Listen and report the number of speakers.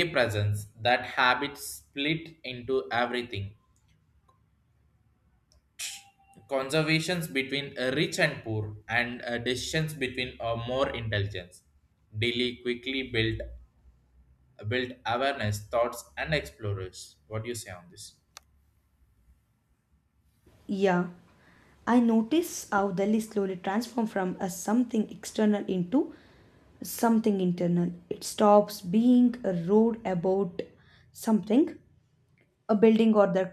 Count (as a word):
two